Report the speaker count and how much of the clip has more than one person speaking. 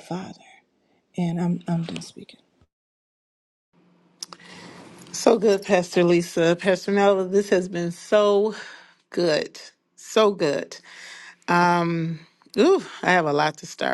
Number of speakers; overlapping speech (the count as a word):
two, no overlap